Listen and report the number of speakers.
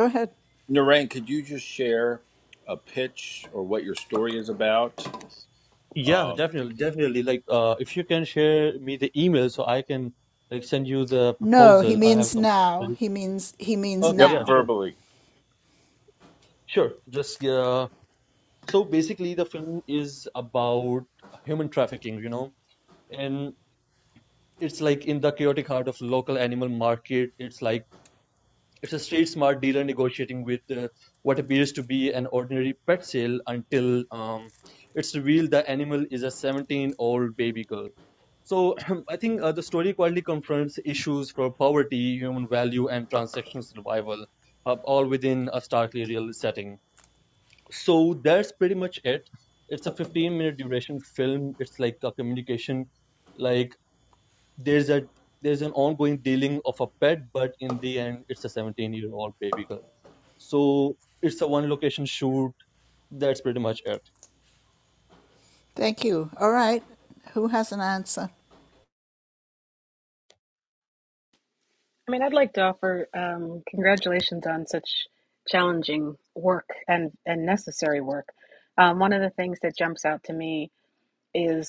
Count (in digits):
4